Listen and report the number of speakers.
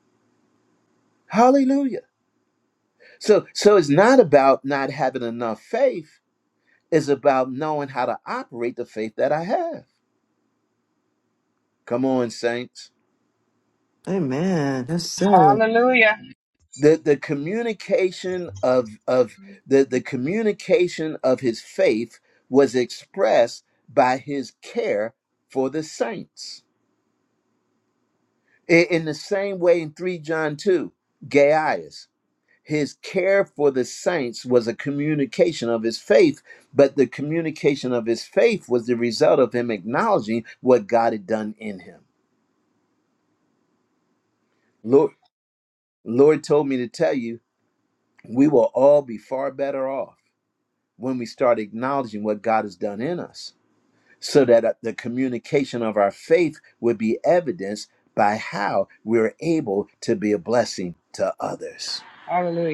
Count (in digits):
3